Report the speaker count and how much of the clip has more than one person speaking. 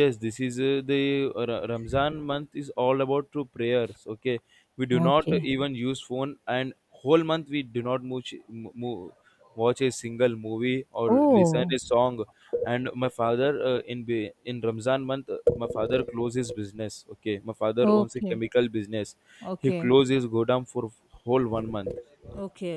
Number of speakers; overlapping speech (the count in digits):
2, about 9%